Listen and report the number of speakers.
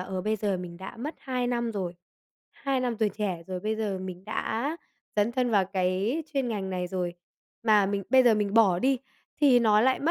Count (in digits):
1